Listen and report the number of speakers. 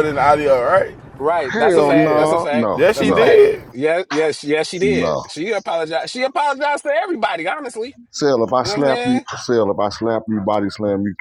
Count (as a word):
three